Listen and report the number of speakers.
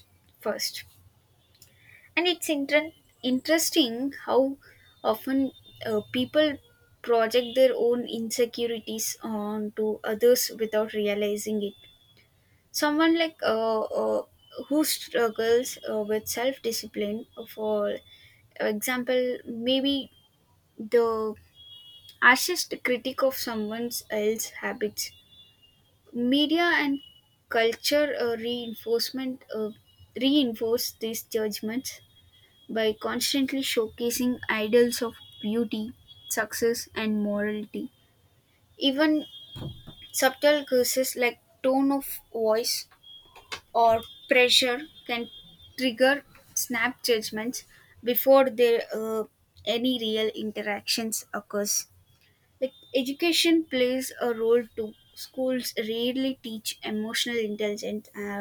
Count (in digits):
1